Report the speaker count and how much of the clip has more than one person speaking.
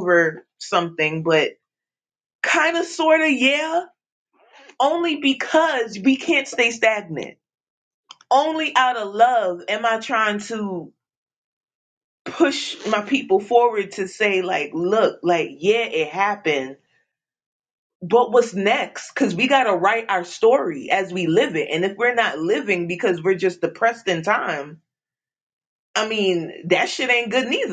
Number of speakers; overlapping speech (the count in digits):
1, no overlap